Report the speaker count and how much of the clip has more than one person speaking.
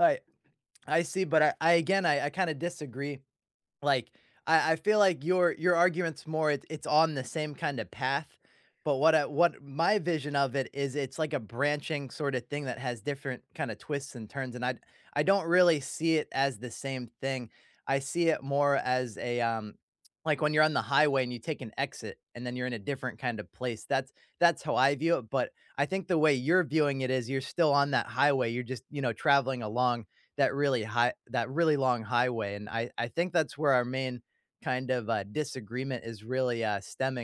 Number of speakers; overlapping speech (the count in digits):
1, no overlap